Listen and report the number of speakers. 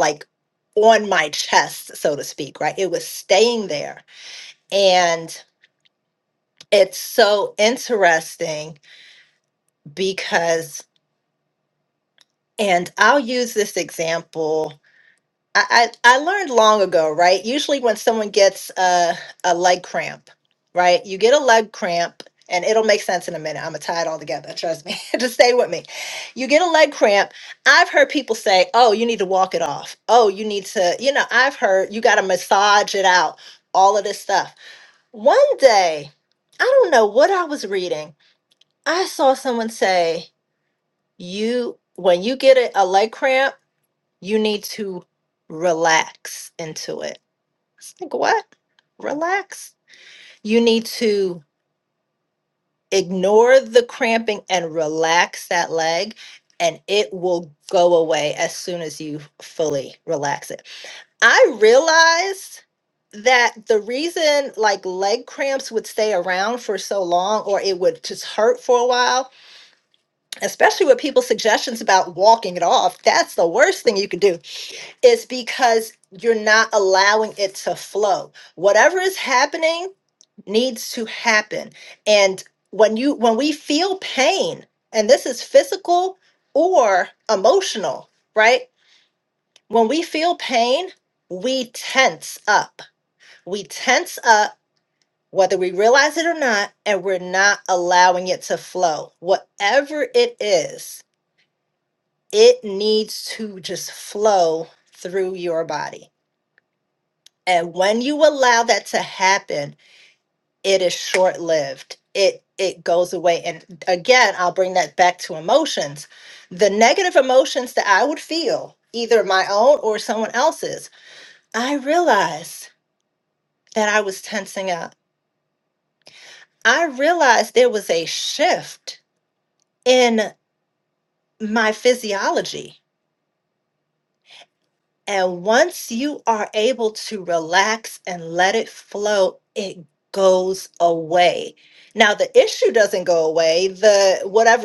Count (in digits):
1